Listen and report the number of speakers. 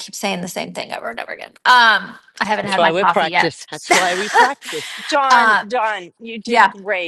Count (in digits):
3